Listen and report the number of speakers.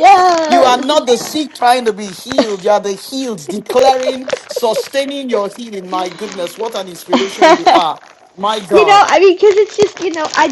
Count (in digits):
2